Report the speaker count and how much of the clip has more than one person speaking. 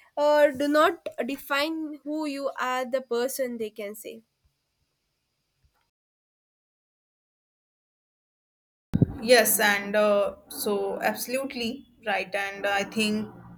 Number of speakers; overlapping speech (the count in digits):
2, no overlap